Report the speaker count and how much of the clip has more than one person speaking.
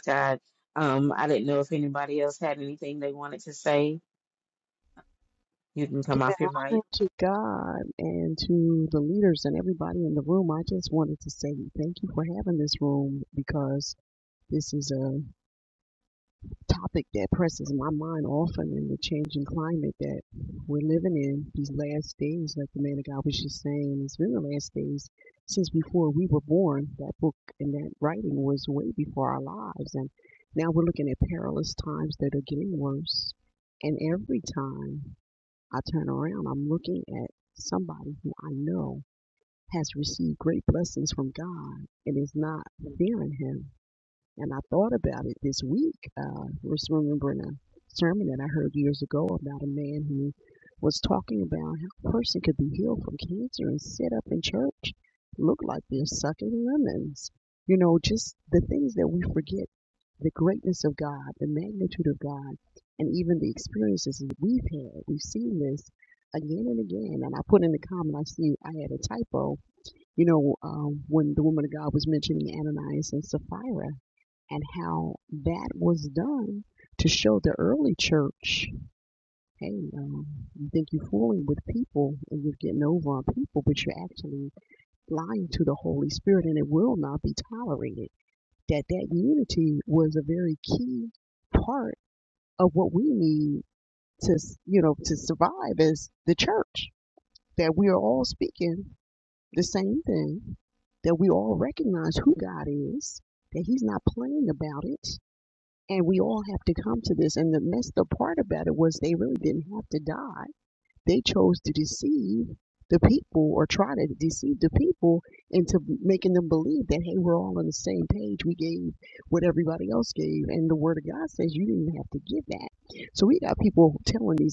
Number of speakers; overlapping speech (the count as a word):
two, about 1%